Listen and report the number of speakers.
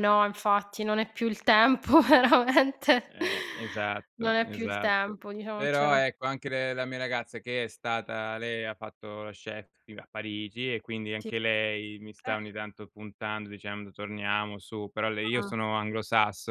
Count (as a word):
two